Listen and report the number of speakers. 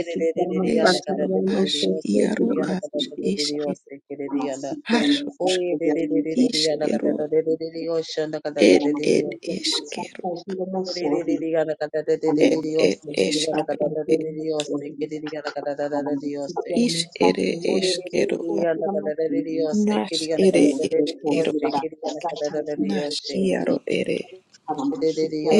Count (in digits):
3